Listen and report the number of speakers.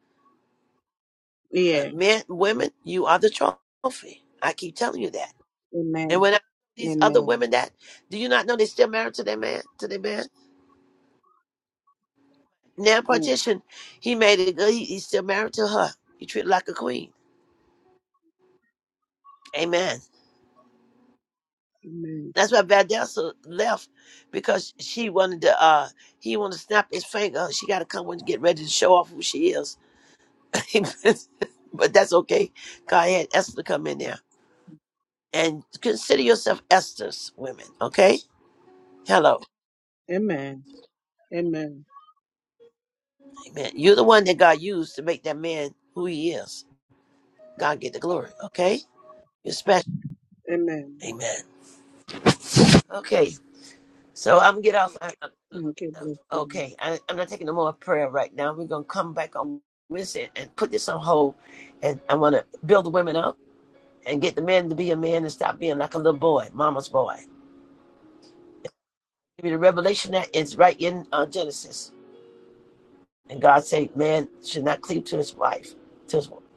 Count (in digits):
2